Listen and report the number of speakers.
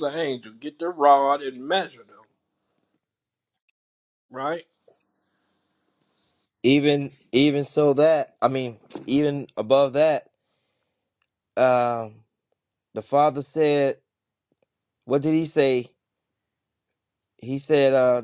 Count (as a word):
two